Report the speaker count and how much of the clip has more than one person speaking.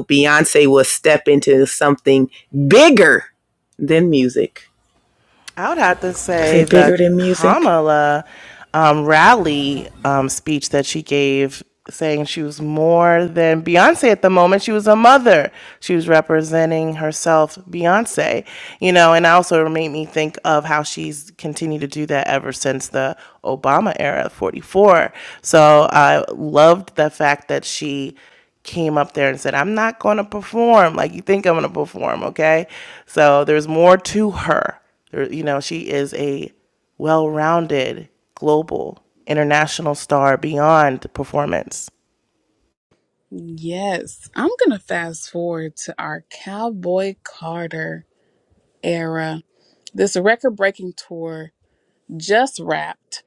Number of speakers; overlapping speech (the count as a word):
three, about 2%